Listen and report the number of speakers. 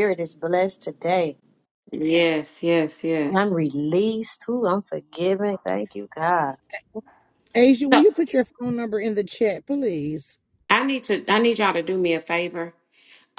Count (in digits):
3